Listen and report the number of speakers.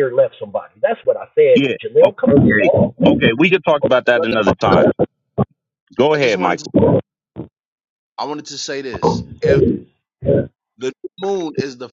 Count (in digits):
3